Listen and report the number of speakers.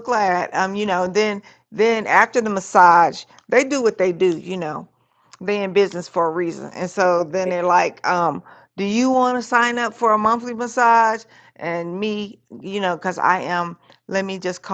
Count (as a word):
one